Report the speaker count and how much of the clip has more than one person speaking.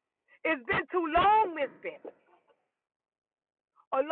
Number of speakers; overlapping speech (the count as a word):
one, no overlap